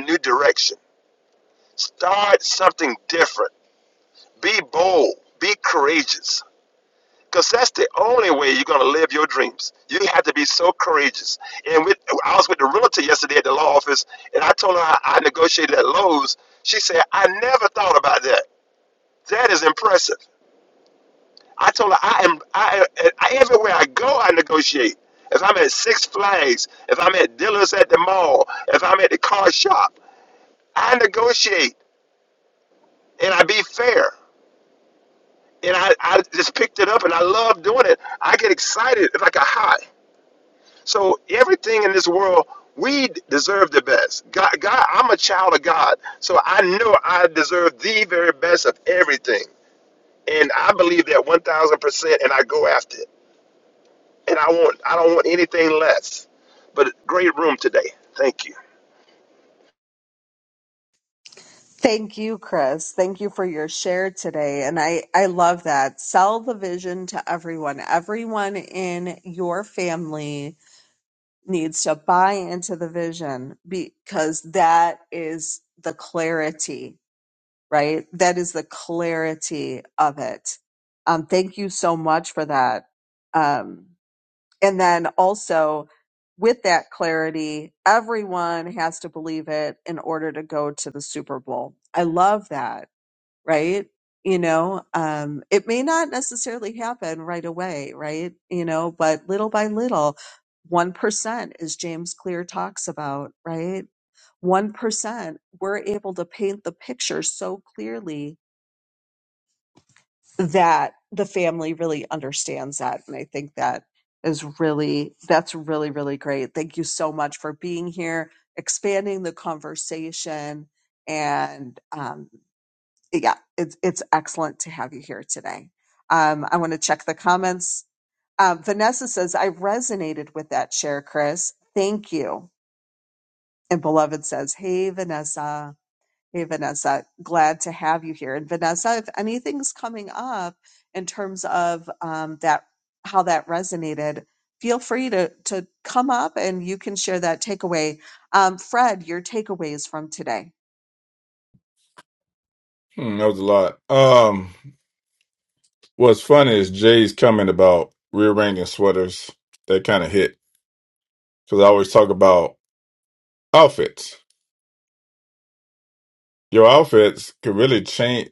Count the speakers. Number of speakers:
three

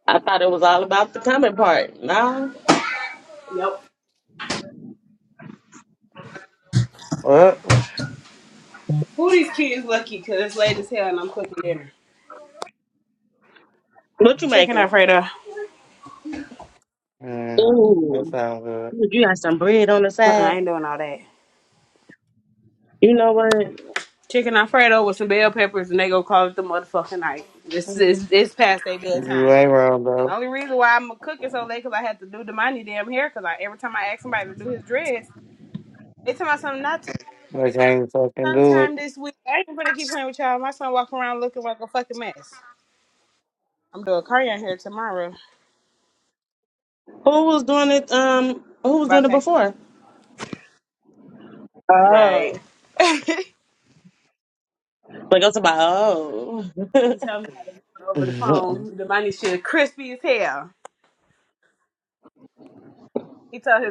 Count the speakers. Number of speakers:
three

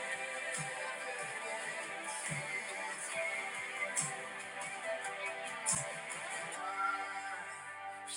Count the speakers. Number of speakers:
zero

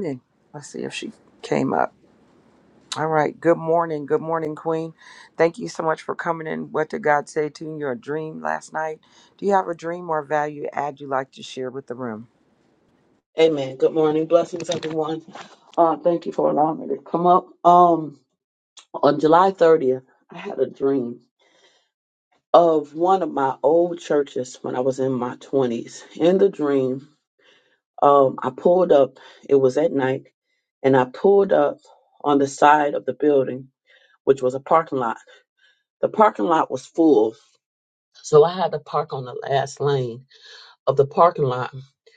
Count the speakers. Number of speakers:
two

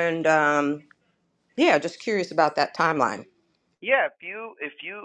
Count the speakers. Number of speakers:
two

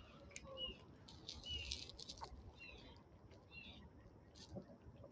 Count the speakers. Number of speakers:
zero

